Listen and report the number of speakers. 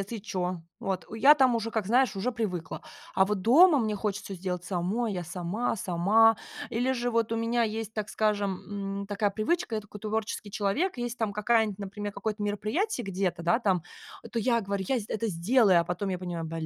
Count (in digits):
1